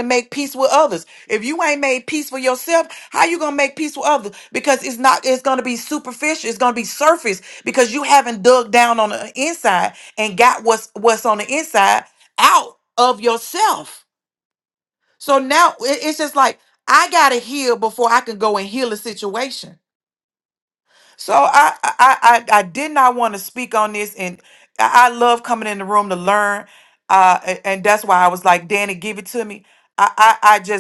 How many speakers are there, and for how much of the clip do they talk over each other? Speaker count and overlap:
one, no overlap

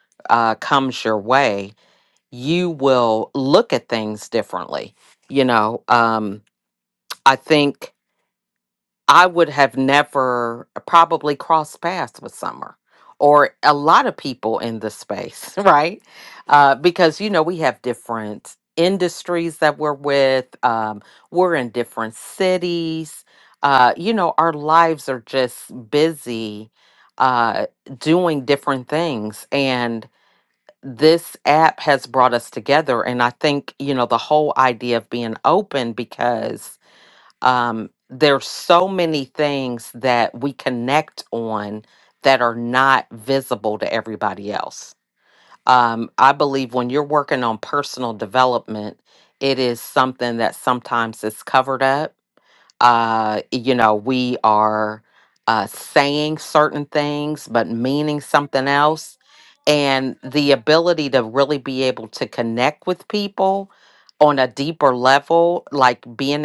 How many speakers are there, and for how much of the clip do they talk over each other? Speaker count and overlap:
one, no overlap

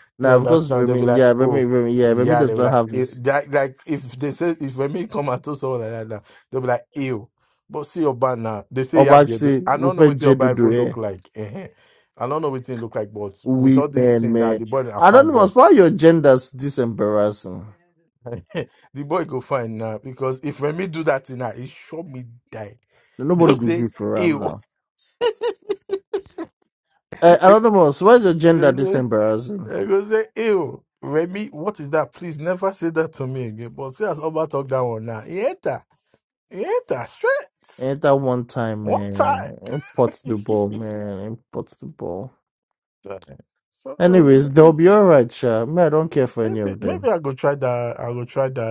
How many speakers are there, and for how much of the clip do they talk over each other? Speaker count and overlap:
two, about 19%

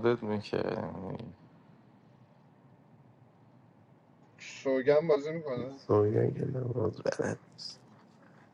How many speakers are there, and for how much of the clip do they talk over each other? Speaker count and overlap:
three, no overlap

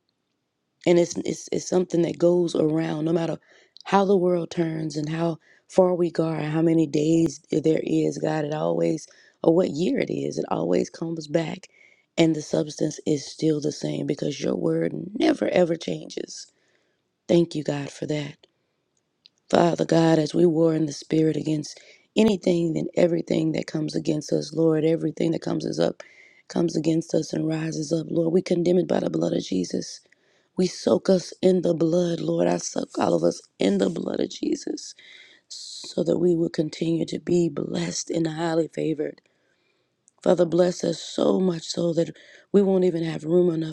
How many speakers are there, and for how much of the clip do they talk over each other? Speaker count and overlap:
one, no overlap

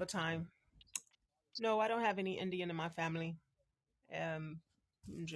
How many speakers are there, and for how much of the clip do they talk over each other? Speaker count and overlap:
one, no overlap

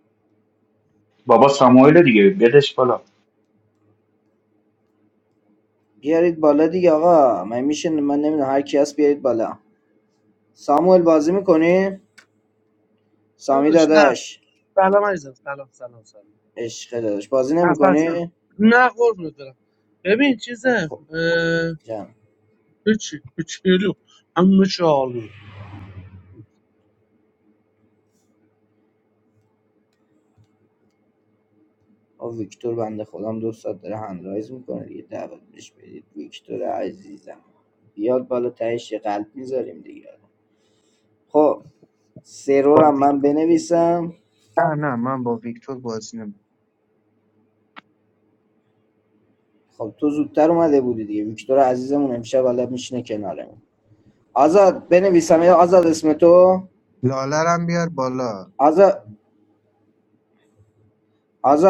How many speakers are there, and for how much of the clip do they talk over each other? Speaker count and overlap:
four, about 4%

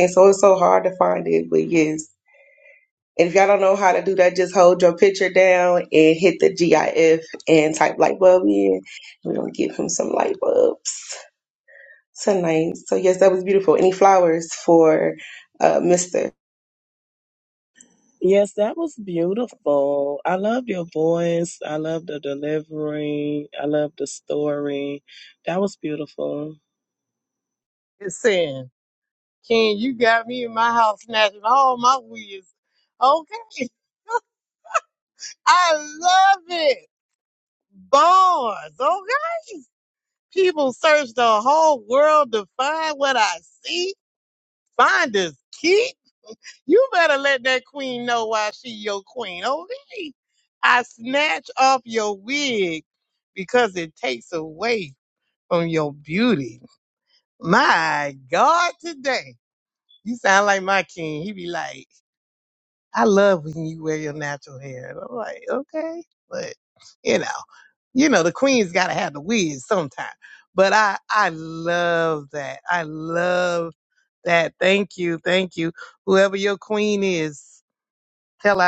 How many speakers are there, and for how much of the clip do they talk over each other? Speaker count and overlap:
three, no overlap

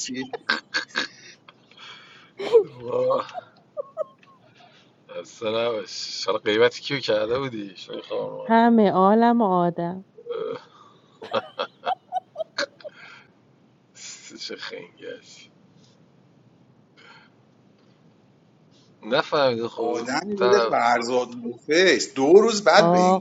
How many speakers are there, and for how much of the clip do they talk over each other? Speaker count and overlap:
three, about 6%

